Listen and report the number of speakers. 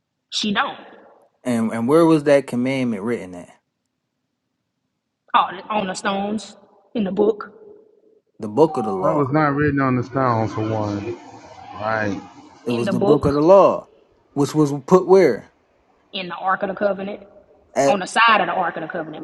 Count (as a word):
three